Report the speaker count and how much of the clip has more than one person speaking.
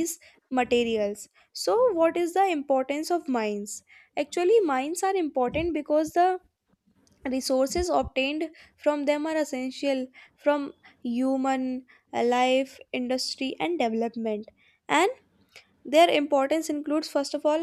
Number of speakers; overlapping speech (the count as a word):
one, no overlap